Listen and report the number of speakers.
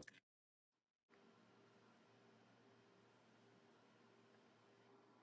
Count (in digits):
0